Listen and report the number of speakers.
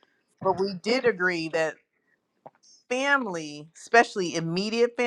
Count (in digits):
1